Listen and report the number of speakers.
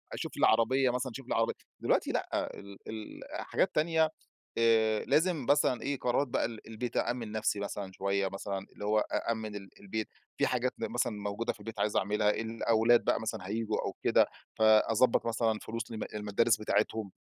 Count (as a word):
one